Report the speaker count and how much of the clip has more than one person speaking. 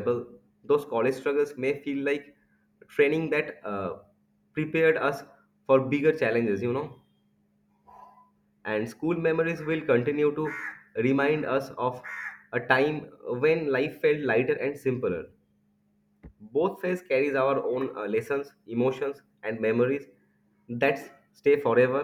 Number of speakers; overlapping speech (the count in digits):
1, no overlap